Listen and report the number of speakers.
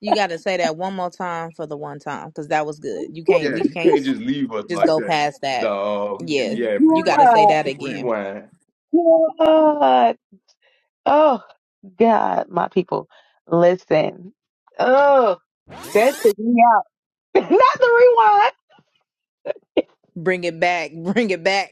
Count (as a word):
three